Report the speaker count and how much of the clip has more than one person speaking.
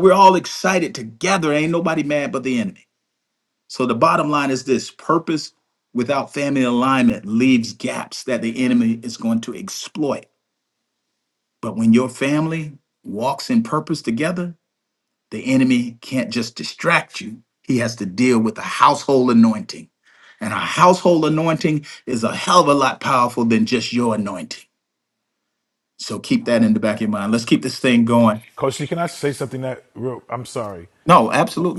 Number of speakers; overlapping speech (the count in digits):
2, no overlap